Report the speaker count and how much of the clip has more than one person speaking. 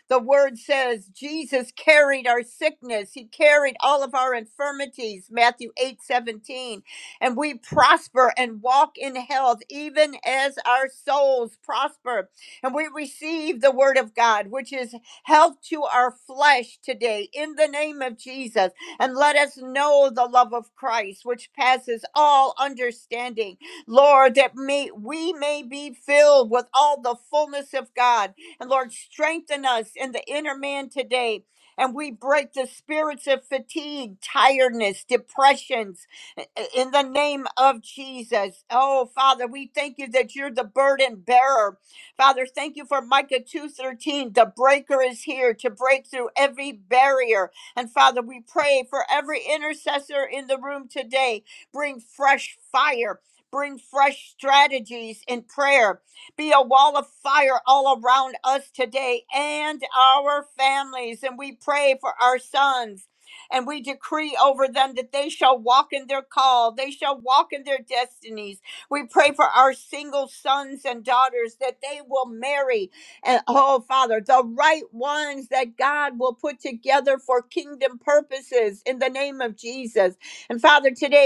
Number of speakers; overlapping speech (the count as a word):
one, no overlap